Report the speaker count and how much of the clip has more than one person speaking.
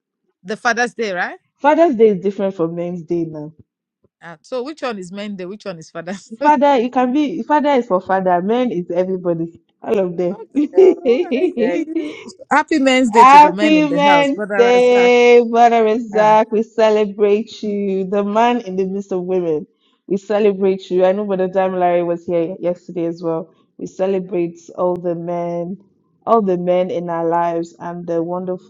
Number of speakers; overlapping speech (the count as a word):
two, about 8%